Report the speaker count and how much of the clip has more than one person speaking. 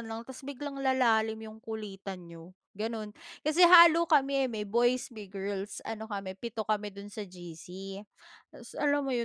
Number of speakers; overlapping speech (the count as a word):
one, no overlap